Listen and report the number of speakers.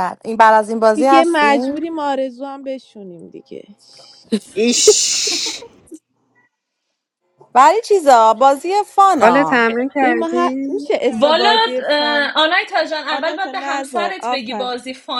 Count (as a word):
four